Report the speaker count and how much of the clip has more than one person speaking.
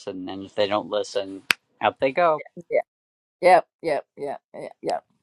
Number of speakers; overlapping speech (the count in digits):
2, no overlap